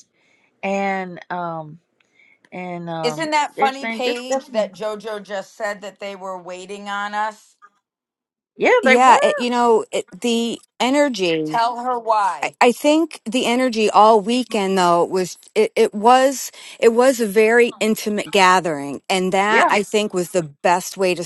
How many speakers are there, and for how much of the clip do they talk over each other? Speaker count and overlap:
3, about 10%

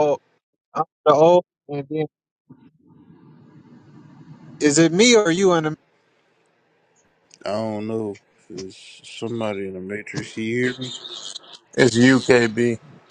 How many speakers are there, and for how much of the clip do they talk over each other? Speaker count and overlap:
3, no overlap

